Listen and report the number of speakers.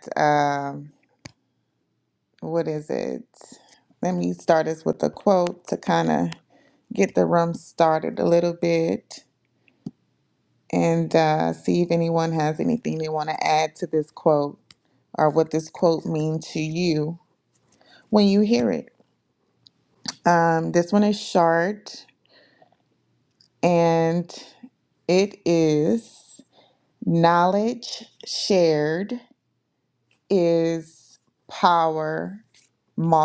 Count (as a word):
one